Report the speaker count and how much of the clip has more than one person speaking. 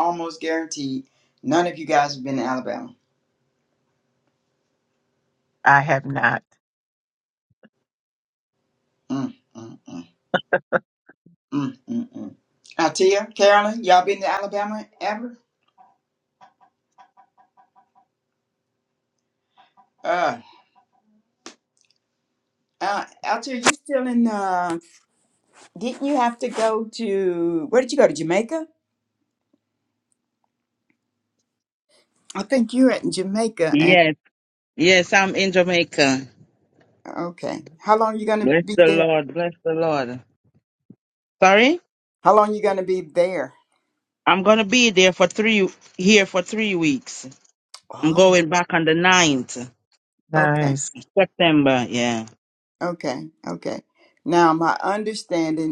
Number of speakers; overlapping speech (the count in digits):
3, about 3%